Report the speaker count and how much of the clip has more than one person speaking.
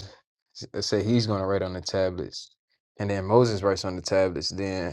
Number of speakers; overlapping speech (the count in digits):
1, no overlap